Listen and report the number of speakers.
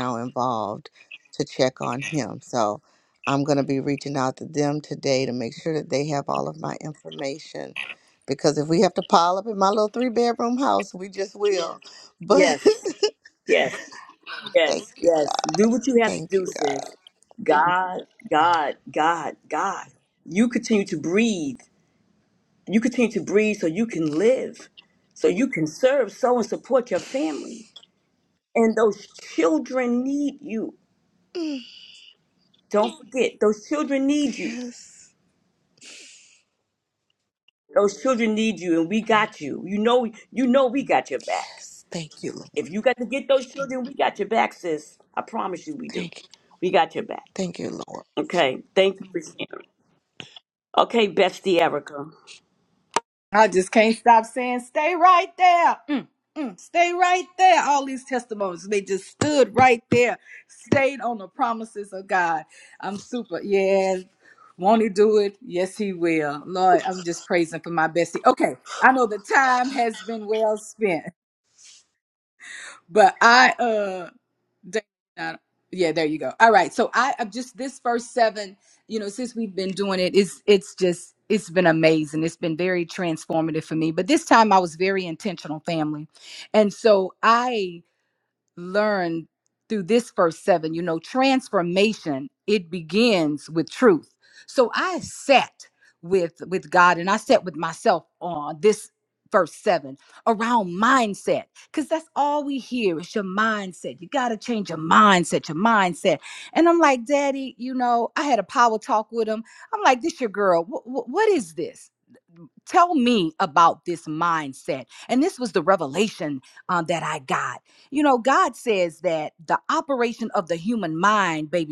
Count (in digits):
3